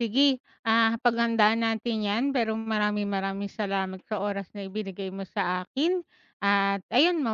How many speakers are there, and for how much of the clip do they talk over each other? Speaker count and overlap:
1, no overlap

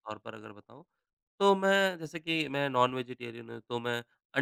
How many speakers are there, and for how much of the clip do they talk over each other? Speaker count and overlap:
1, no overlap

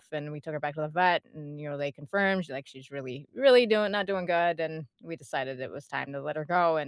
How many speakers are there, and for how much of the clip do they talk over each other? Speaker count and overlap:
1, no overlap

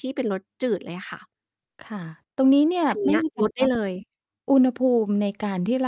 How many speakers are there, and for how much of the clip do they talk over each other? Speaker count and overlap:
2, about 14%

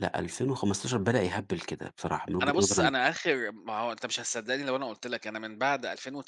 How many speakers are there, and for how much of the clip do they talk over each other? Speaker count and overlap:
2, about 8%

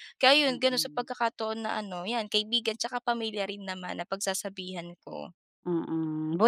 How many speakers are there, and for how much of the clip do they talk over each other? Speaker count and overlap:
2, about 7%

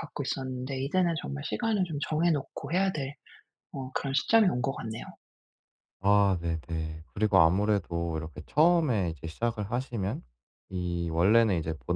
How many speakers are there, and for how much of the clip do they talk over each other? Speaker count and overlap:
2, no overlap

